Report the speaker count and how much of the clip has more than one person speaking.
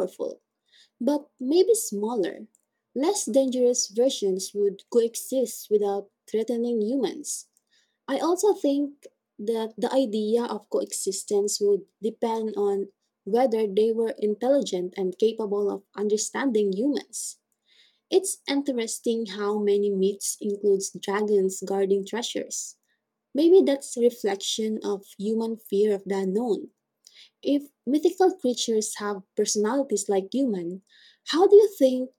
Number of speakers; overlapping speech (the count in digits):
1, no overlap